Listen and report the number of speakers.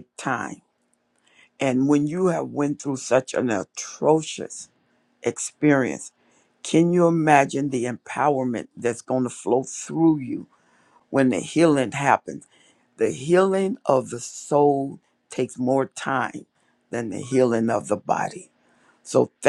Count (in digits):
1